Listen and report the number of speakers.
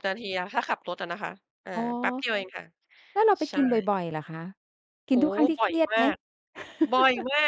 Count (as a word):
two